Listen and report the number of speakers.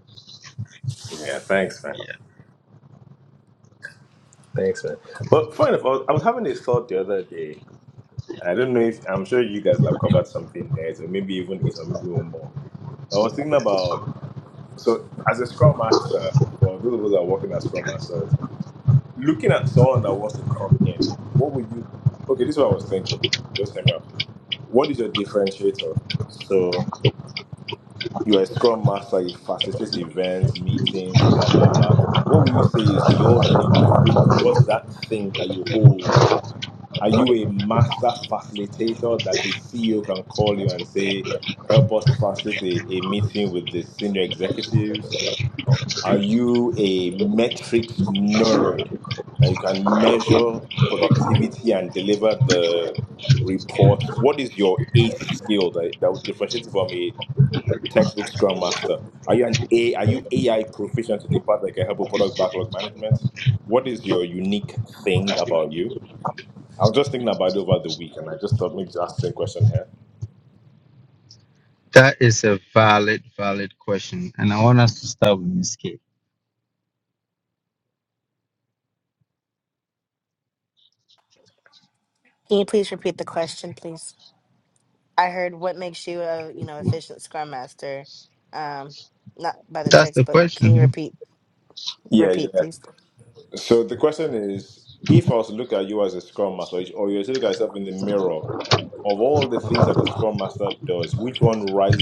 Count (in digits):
3